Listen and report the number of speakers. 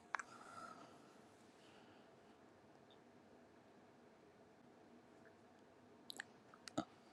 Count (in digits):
0